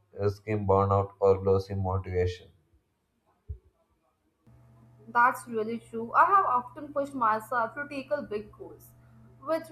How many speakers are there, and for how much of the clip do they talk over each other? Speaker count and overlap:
2, no overlap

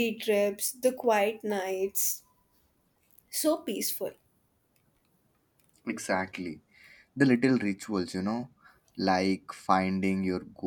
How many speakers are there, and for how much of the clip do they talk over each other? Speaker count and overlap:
2, no overlap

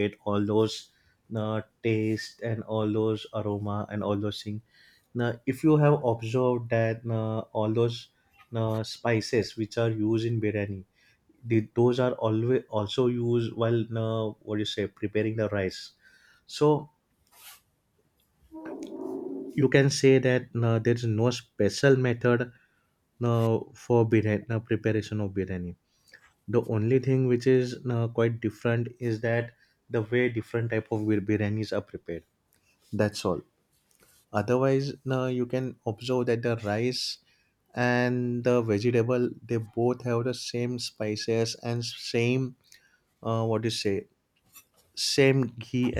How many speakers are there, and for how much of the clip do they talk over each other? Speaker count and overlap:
1, no overlap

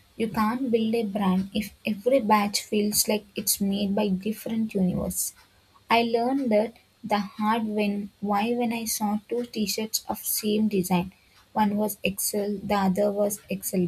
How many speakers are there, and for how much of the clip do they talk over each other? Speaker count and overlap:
1, no overlap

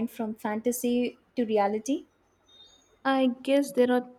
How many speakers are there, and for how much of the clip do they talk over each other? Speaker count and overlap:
2, no overlap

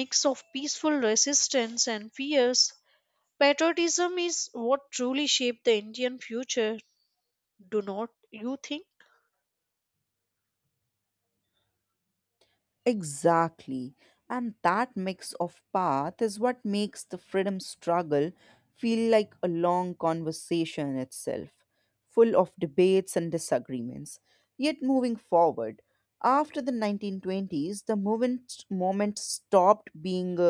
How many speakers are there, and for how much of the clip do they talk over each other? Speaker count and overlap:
2, no overlap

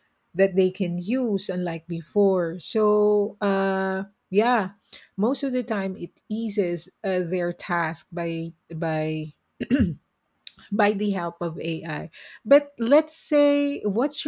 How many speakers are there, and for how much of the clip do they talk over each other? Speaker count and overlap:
1, no overlap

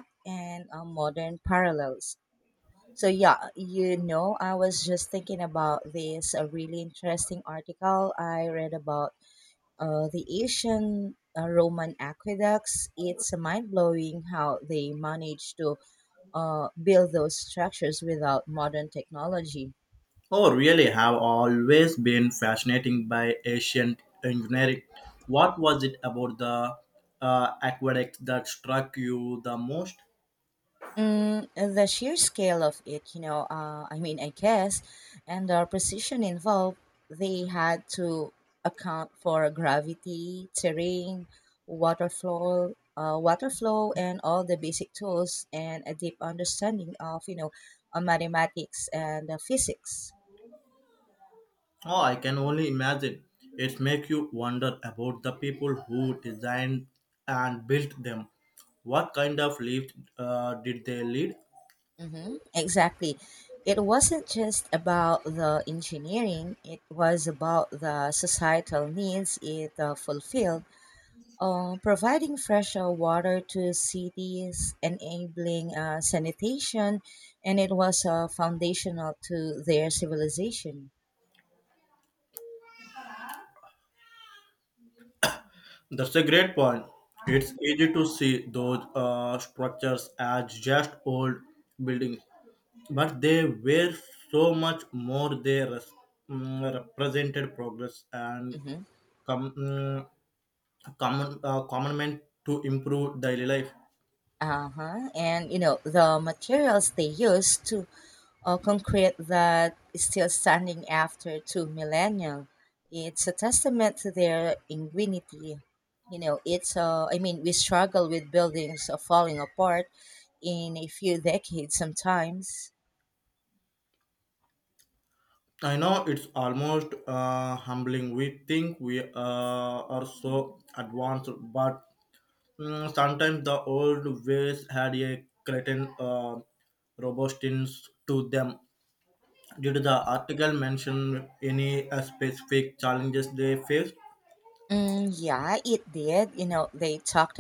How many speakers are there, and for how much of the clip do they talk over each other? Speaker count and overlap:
2, under 1%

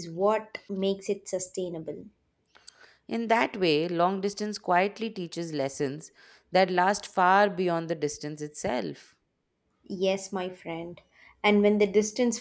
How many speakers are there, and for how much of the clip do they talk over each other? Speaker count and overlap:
2, no overlap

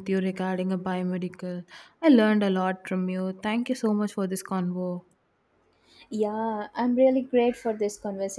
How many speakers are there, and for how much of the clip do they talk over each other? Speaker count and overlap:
2, no overlap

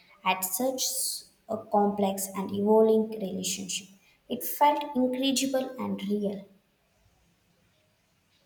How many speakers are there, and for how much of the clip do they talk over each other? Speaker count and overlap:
1, no overlap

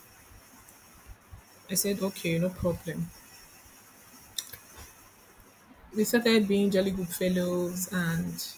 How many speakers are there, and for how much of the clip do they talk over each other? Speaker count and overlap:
1, no overlap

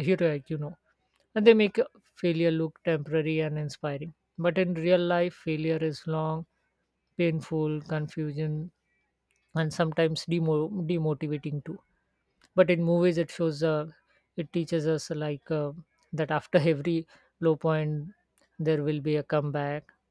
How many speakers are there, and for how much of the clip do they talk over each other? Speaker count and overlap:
1, no overlap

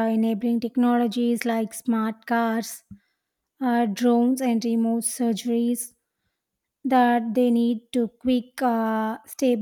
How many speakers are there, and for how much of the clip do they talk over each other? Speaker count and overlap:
1, no overlap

